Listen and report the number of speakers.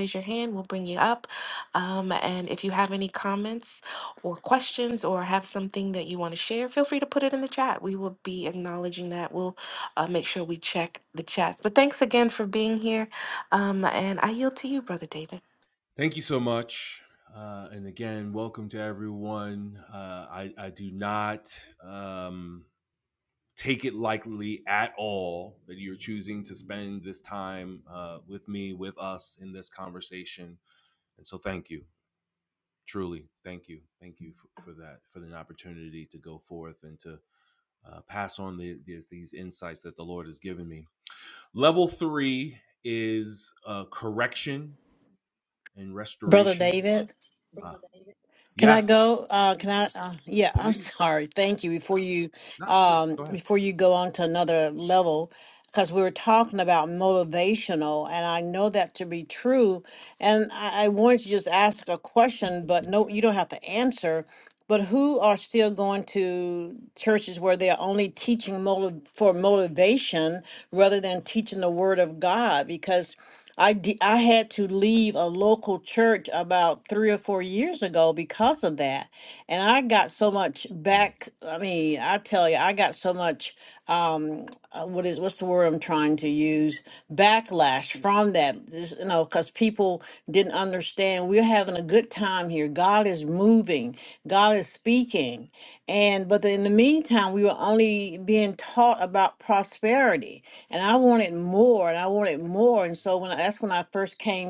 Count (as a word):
three